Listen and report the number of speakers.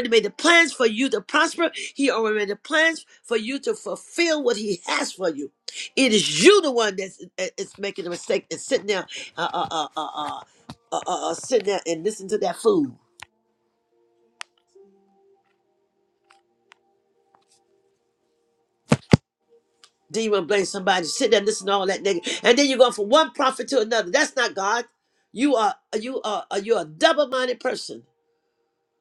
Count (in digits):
1